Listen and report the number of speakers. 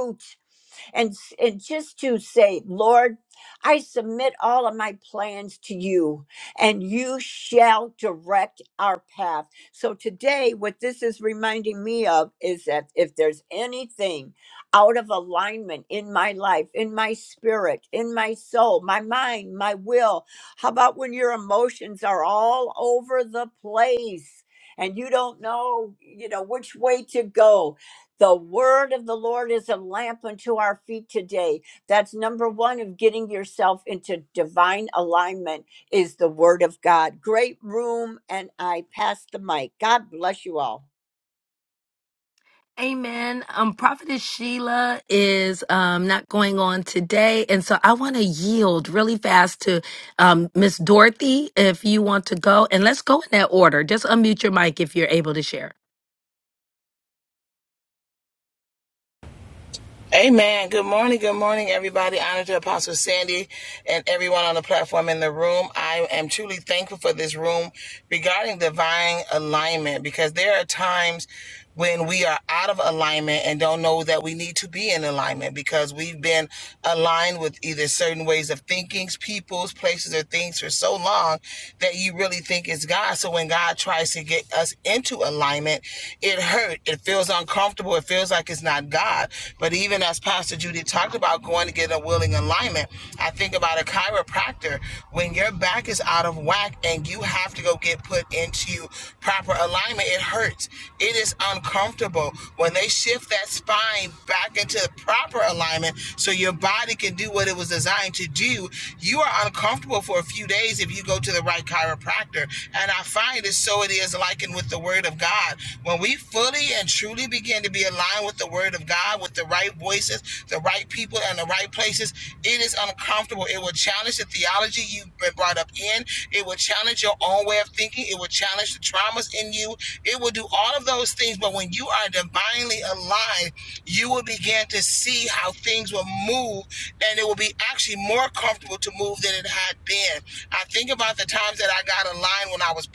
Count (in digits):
3